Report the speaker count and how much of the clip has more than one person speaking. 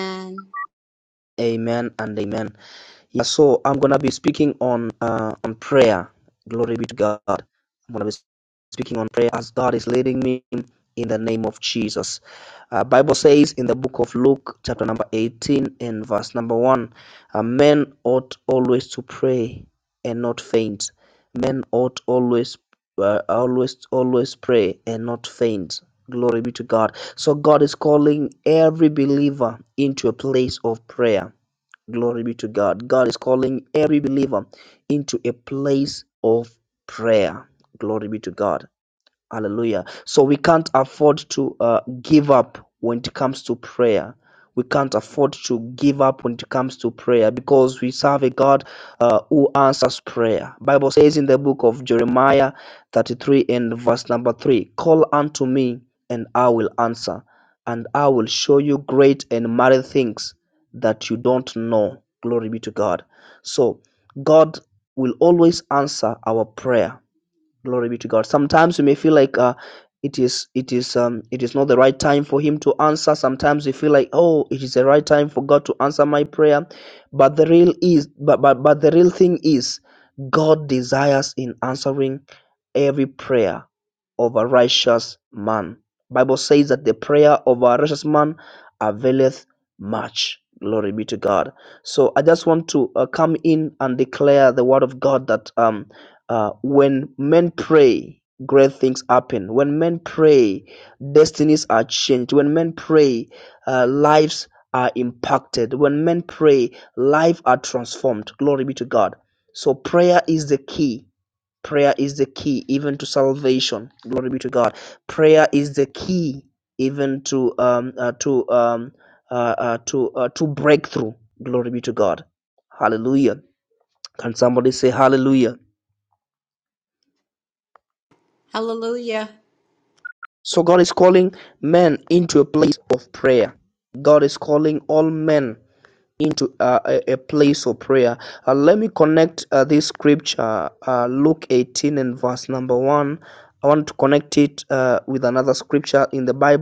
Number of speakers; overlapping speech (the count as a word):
two, no overlap